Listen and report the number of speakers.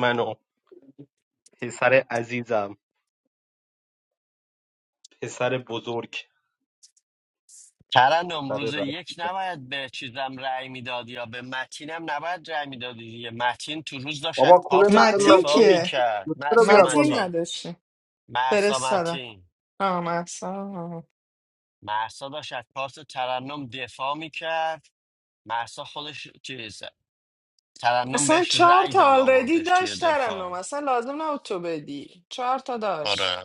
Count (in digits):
3